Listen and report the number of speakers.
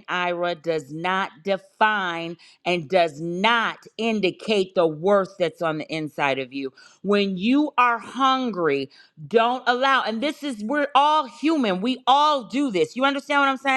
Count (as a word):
one